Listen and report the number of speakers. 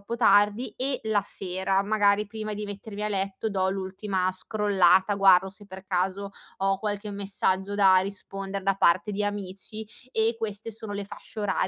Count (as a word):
one